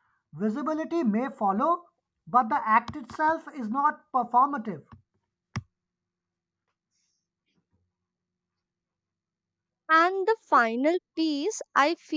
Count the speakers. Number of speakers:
2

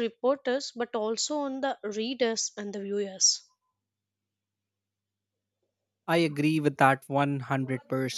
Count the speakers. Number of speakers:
2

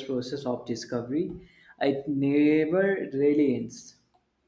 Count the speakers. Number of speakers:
1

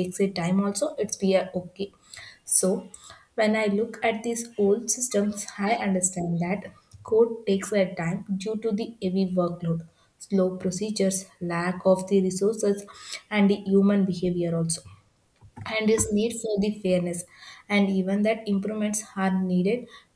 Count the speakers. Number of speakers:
1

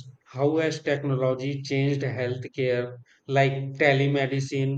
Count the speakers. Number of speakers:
1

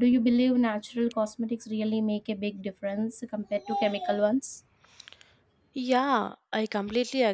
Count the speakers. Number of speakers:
2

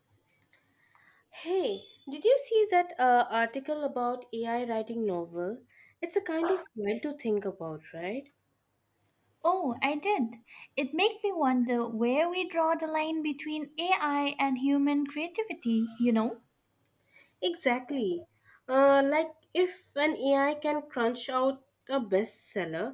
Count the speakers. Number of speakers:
2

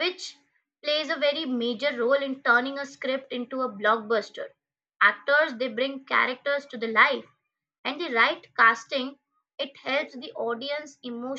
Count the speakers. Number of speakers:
1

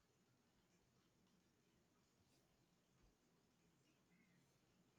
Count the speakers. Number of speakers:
0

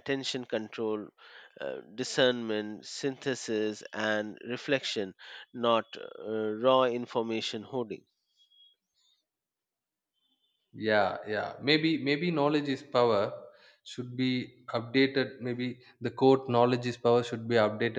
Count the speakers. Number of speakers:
2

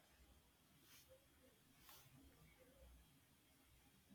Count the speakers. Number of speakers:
0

